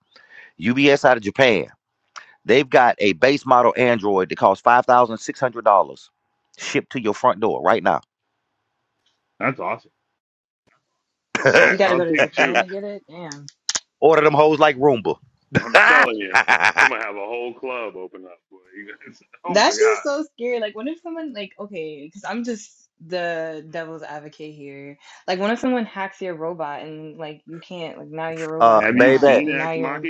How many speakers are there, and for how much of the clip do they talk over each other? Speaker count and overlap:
three, about 10%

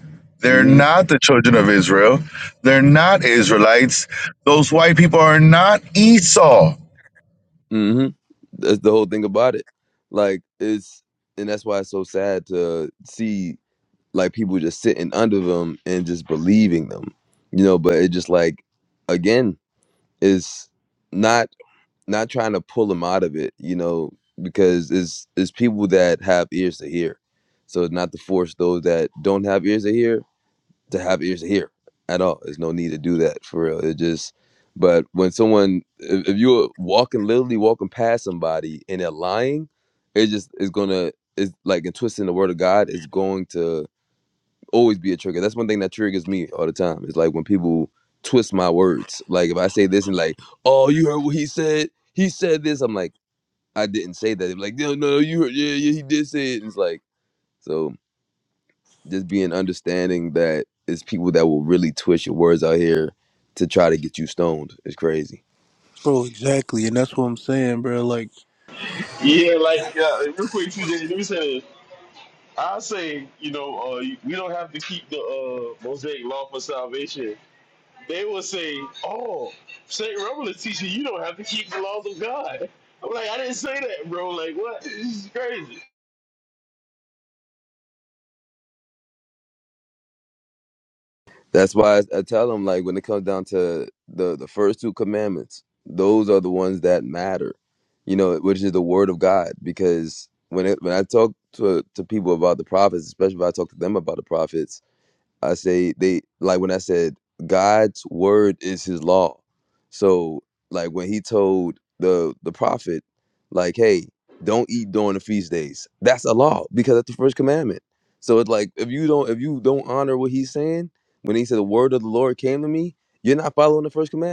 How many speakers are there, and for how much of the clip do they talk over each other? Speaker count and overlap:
four, under 1%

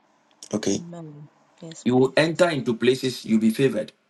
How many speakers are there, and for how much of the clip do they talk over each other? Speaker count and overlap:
two, about 13%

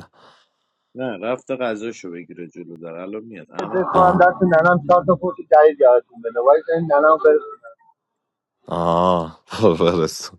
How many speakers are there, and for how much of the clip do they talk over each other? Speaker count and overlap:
three, about 6%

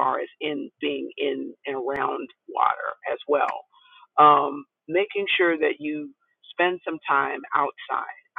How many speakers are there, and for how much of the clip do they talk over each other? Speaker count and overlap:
one, no overlap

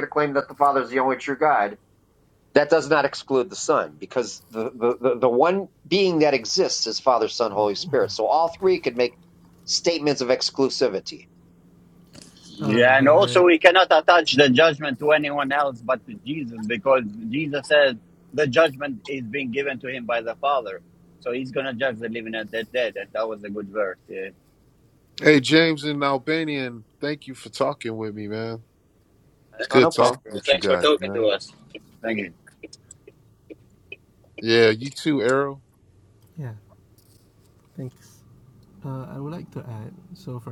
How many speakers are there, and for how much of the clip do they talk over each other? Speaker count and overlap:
four, about 6%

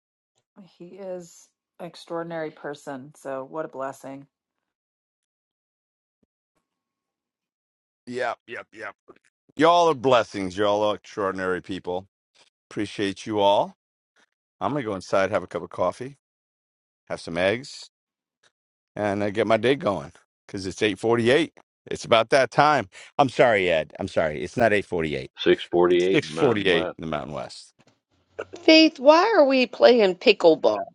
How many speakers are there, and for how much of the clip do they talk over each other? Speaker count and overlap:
four, about 3%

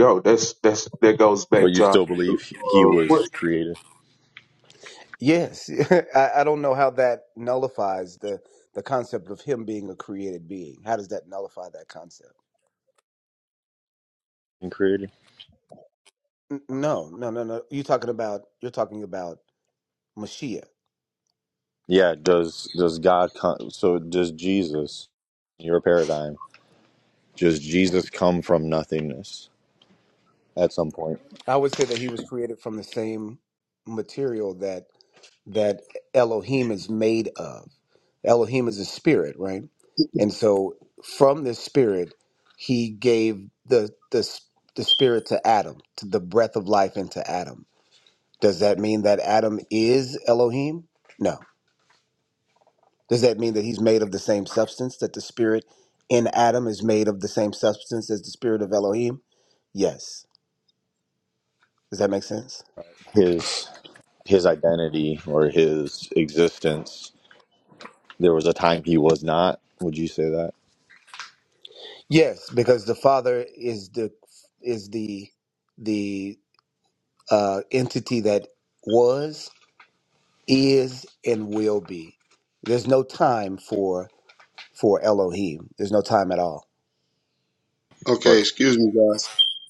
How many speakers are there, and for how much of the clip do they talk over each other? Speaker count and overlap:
four, about 2%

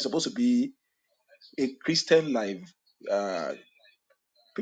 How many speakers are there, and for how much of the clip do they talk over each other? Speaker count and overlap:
one, no overlap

